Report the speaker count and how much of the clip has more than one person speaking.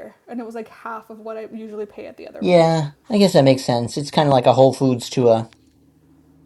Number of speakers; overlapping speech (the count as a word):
two, about 5%